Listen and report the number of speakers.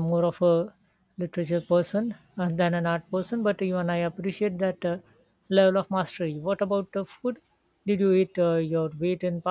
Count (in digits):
1